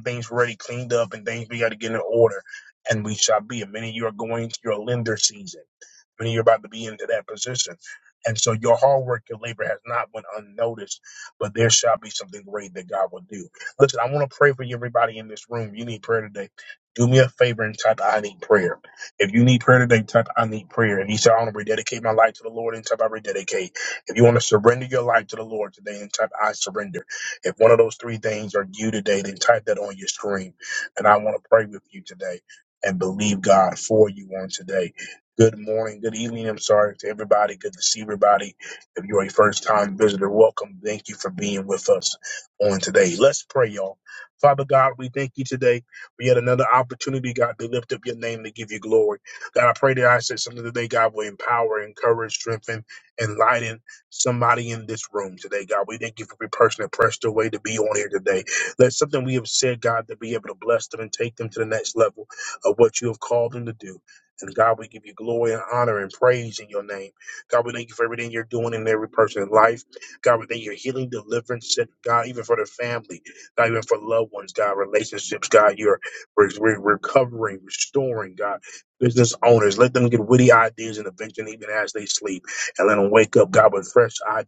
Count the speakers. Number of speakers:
one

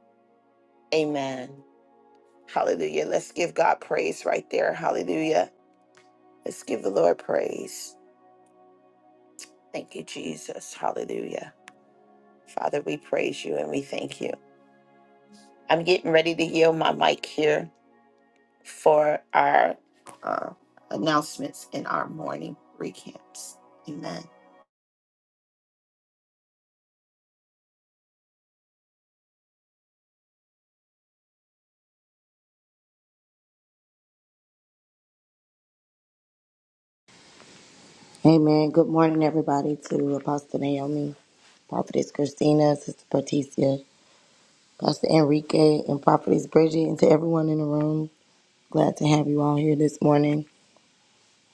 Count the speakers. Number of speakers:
two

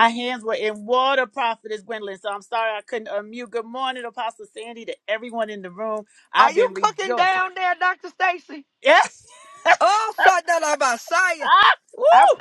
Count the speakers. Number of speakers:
two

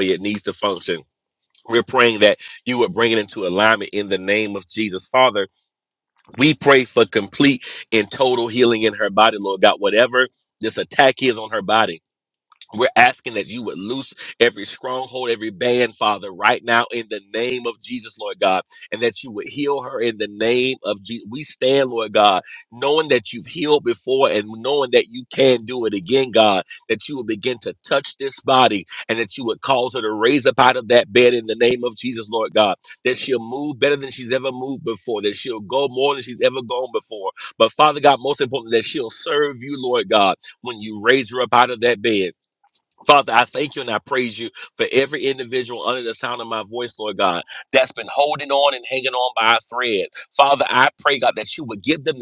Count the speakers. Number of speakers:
one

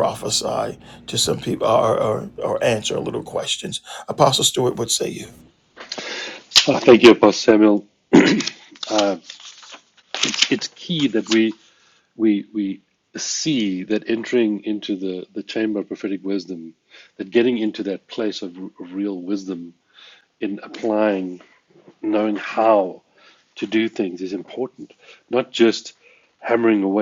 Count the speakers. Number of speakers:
two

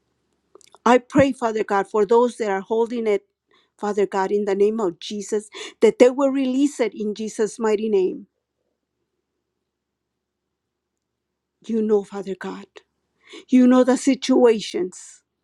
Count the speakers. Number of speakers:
one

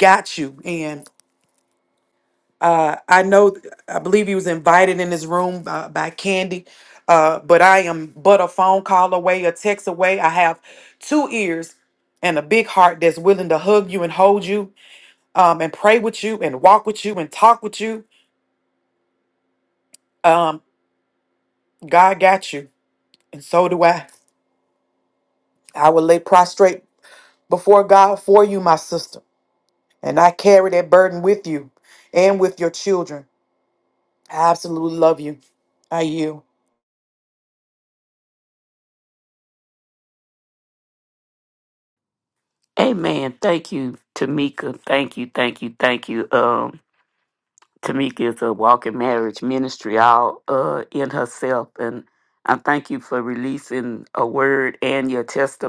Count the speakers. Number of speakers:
two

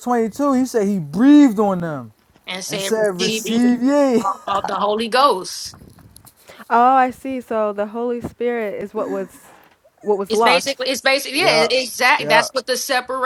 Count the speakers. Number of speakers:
three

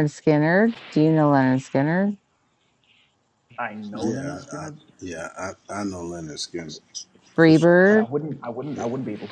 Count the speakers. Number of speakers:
three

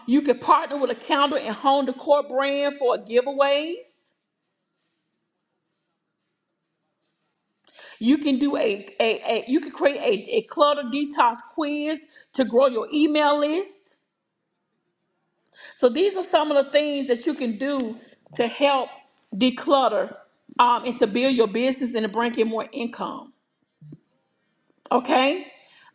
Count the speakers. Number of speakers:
one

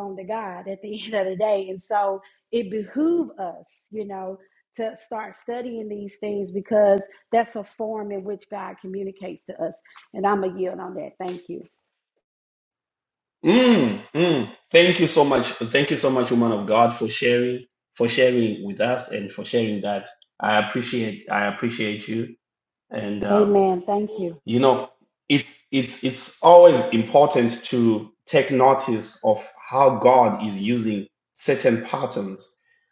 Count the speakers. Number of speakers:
two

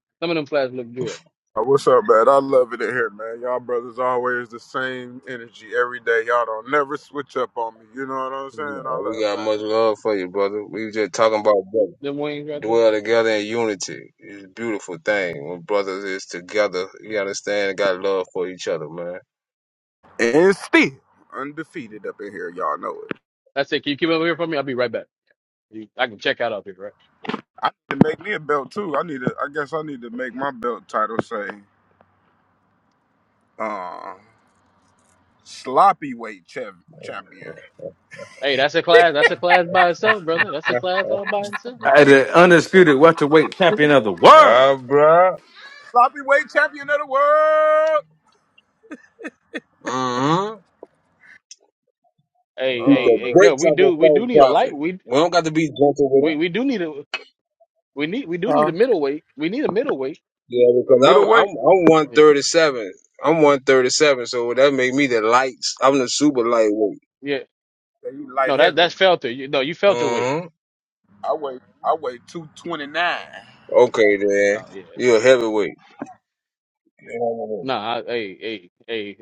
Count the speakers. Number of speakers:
four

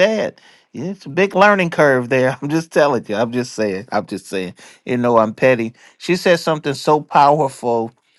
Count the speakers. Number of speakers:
one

